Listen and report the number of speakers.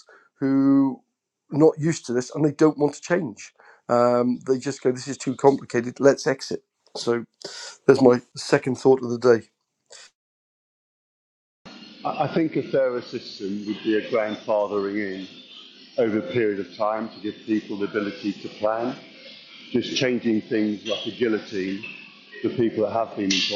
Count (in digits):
2